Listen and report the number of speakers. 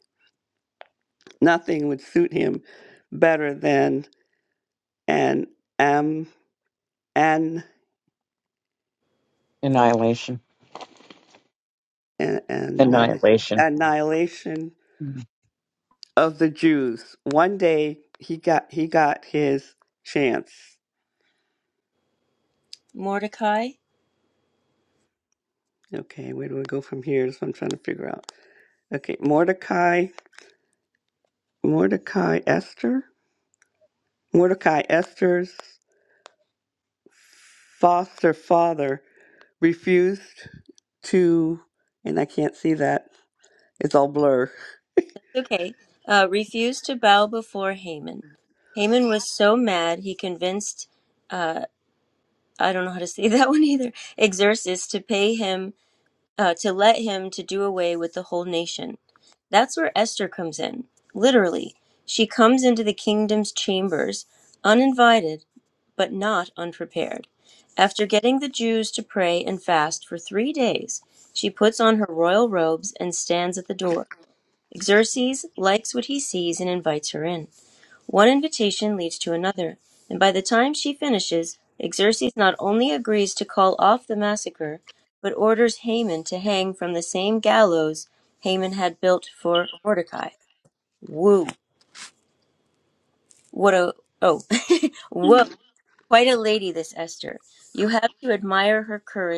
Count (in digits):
3